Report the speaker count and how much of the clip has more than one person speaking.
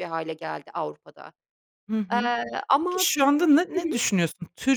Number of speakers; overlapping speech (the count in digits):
2, about 20%